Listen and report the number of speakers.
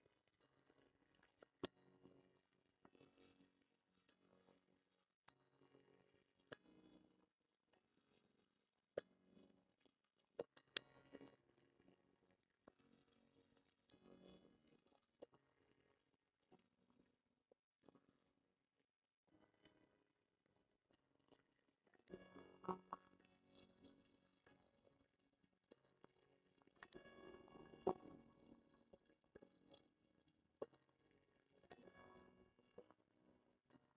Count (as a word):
zero